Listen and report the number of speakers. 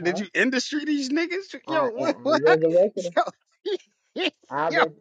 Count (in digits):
2